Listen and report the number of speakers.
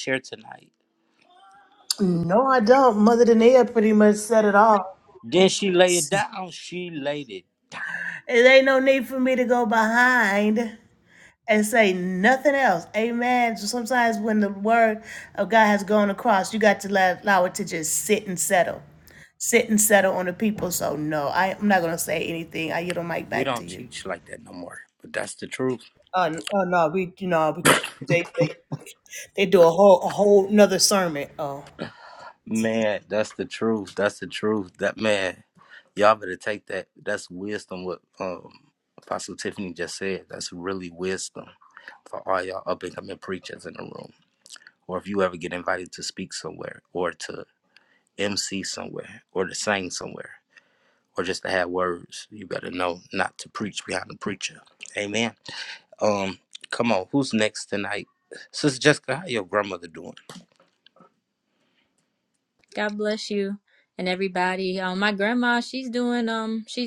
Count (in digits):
3